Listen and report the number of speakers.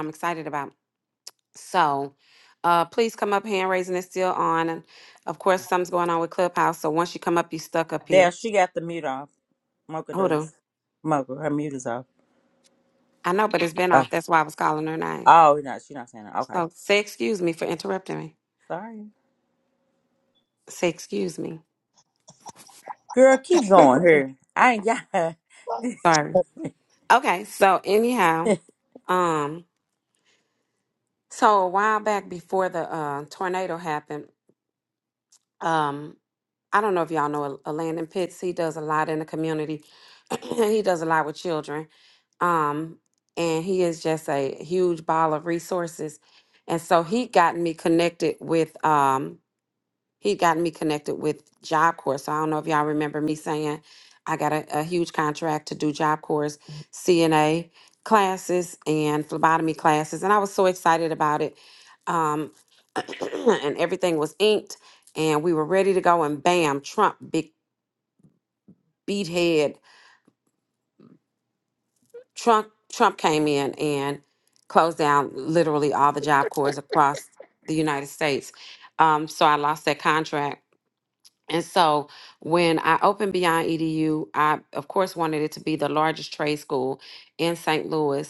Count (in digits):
2